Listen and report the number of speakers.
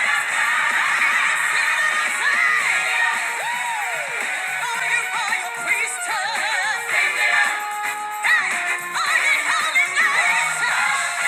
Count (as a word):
zero